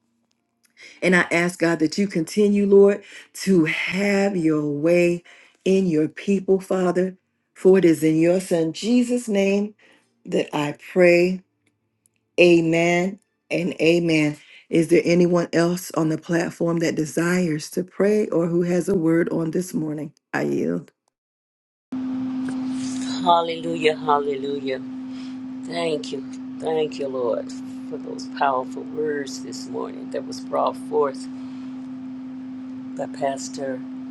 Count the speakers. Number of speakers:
2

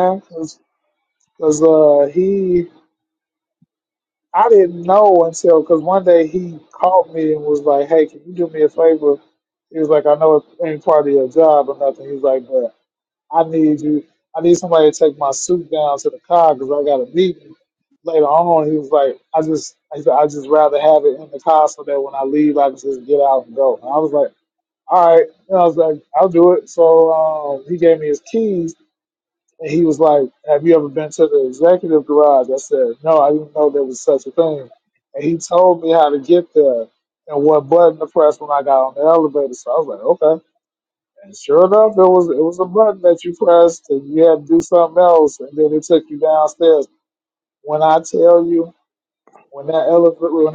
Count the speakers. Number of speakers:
1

